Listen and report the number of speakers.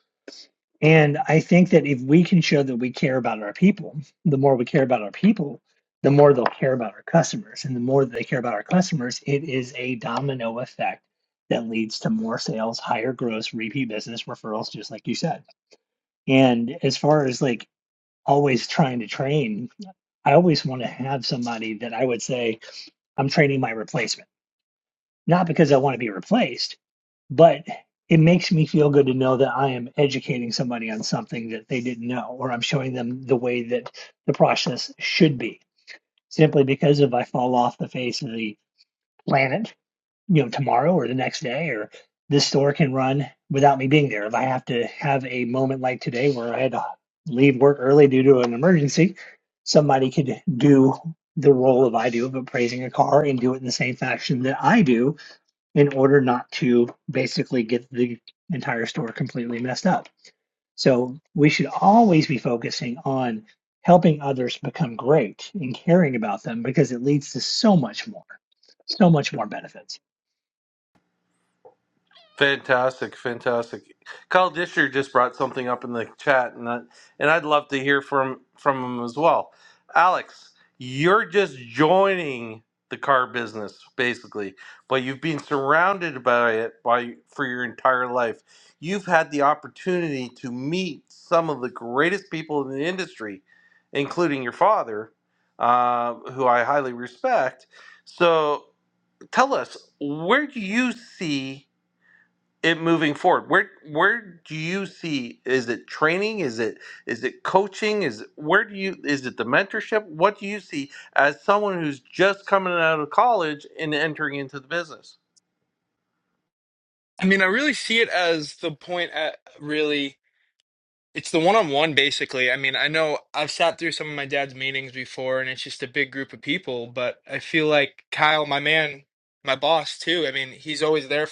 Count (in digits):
3